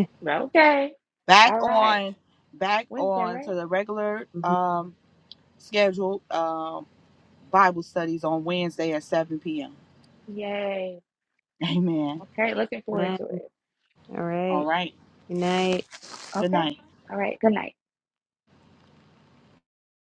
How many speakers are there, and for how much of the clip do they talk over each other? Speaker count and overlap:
three, about 11%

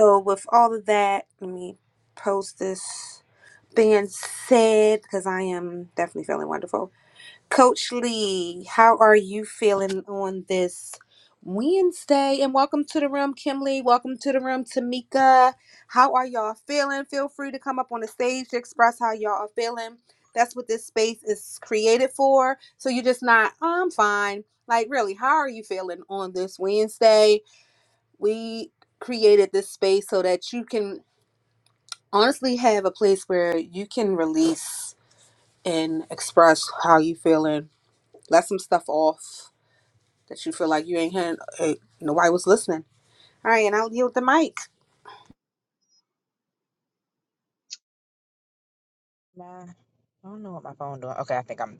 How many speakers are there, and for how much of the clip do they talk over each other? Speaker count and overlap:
two, no overlap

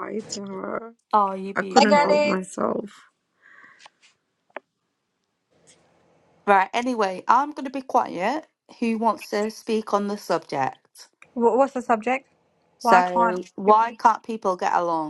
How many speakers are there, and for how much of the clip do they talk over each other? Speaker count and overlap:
three, about 12%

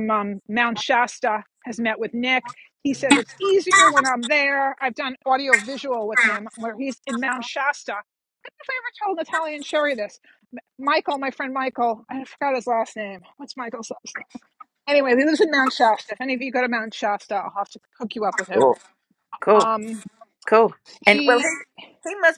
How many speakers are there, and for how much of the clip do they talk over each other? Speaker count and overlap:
two, about 3%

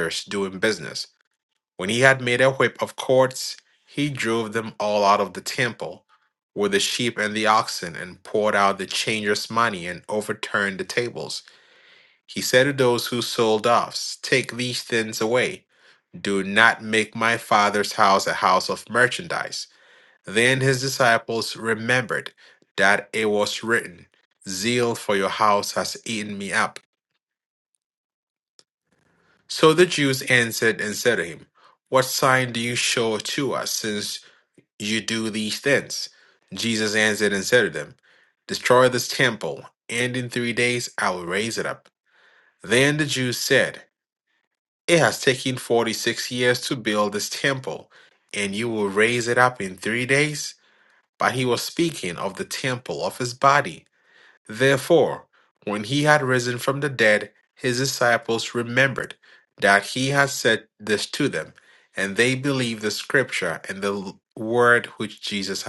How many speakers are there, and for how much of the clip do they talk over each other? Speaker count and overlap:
one, no overlap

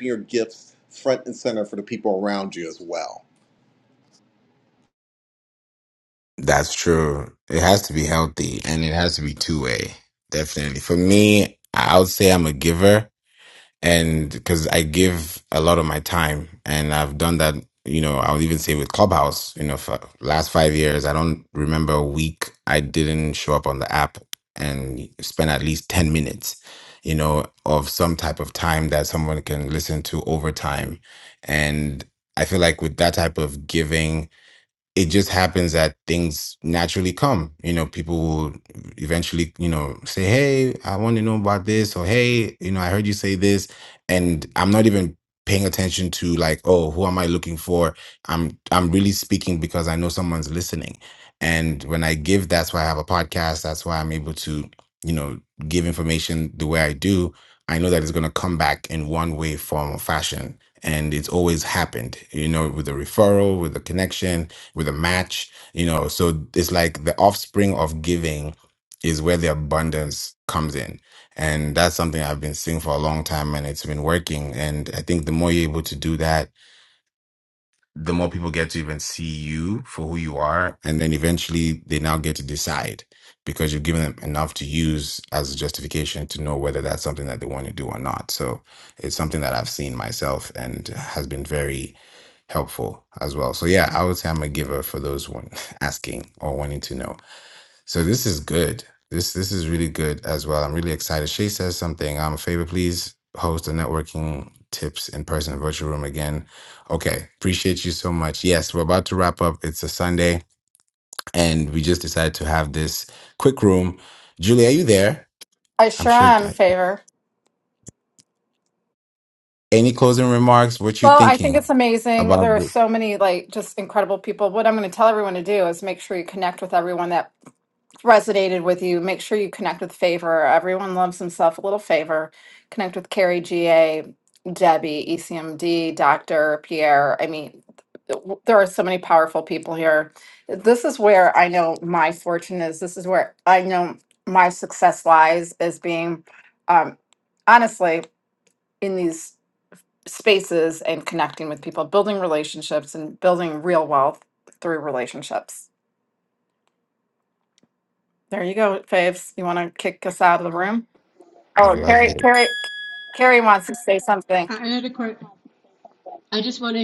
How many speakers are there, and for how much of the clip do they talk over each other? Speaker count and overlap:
four, about 1%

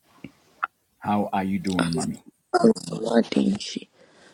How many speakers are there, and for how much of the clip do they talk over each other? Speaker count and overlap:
two, no overlap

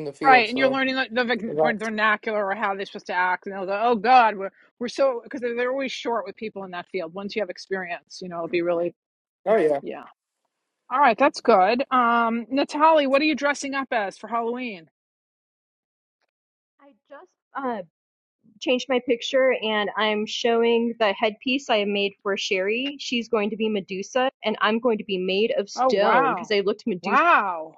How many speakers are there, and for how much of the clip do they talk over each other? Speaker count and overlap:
three, about 6%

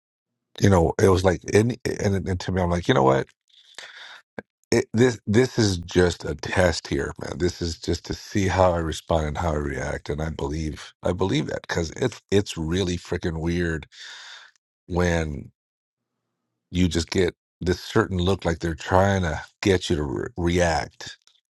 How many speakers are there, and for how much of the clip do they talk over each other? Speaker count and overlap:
one, no overlap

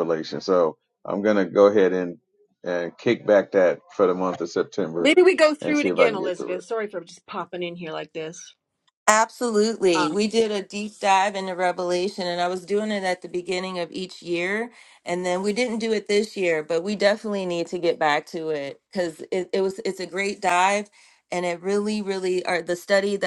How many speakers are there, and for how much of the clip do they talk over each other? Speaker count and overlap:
three, about 6%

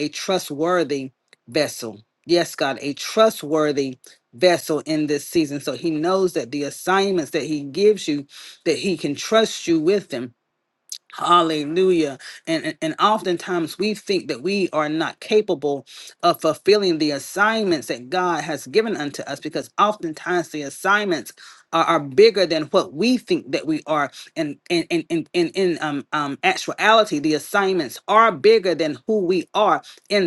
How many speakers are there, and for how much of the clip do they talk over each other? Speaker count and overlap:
one, no overlap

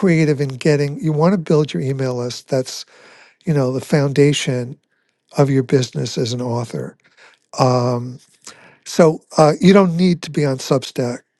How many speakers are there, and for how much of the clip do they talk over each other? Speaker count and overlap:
one, no overlap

